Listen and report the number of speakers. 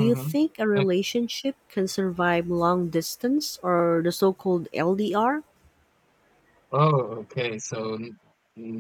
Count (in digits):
2